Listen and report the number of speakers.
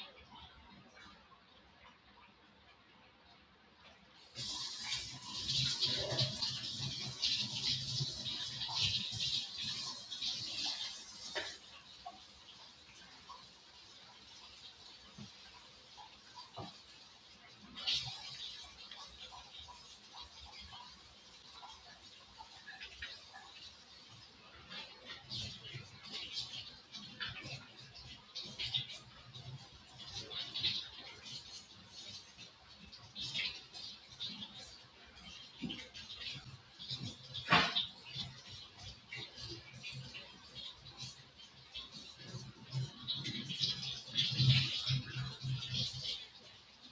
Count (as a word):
zero